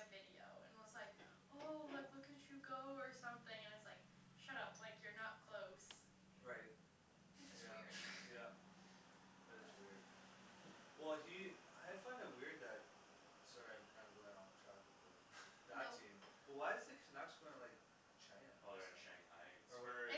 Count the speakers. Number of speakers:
three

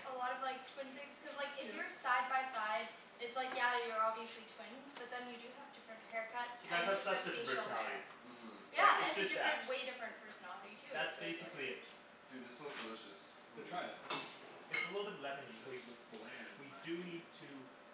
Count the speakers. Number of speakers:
four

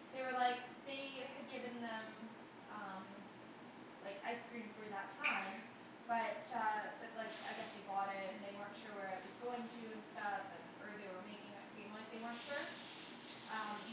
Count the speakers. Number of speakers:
one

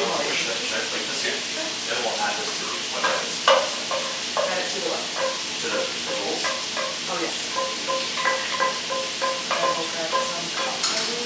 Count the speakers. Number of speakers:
two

